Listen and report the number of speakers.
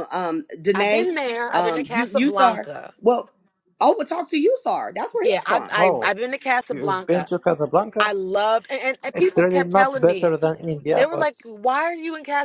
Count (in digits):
3